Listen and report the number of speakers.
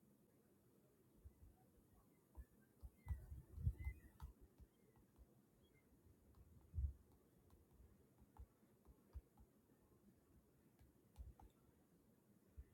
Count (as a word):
zero